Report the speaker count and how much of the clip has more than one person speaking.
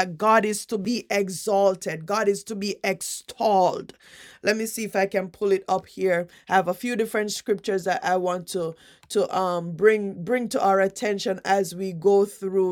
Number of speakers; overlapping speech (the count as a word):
one, no overlap